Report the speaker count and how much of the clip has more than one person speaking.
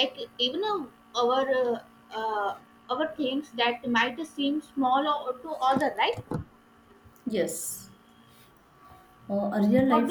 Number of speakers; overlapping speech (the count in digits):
2, about 3%